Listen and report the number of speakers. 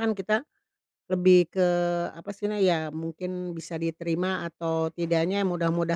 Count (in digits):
1